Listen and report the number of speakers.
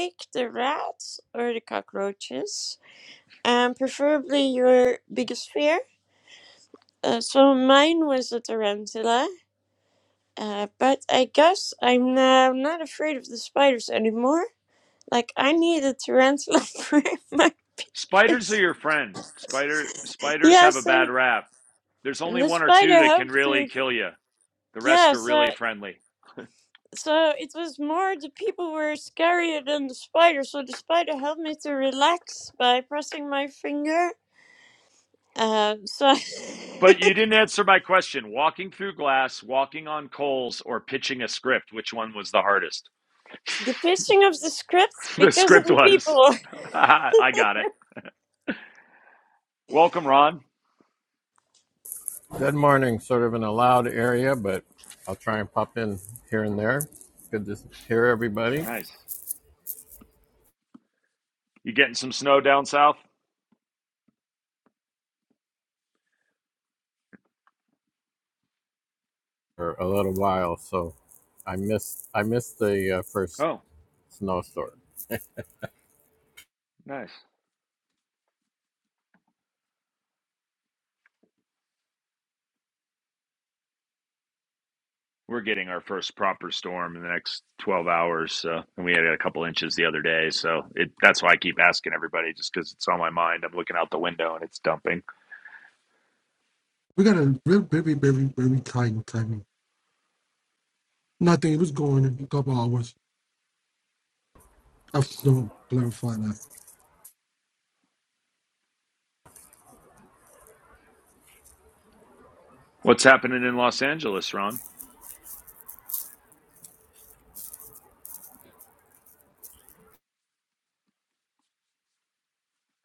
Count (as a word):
four